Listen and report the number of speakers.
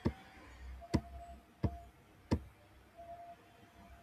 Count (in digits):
0